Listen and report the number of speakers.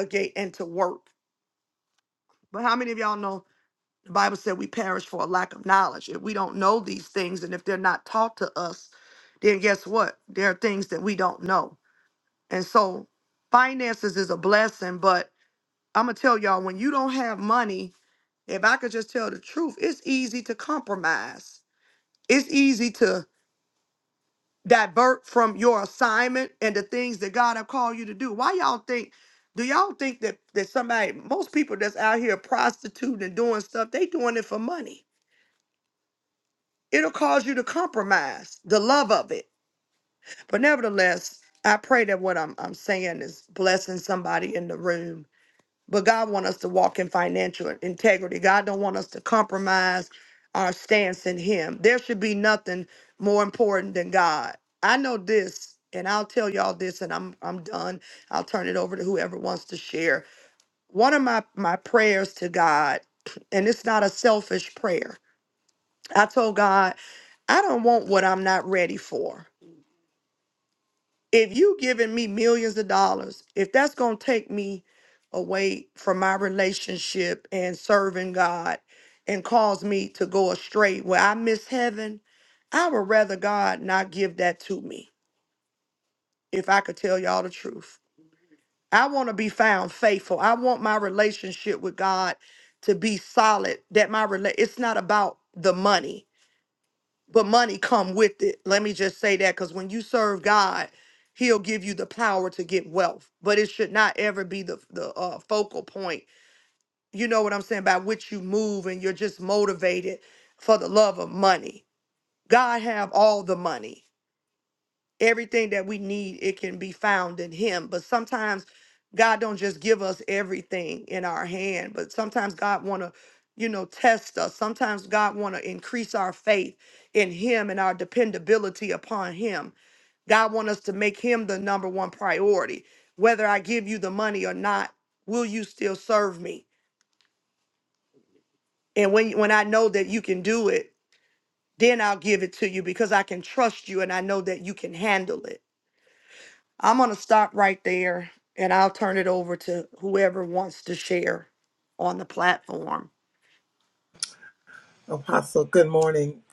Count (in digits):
2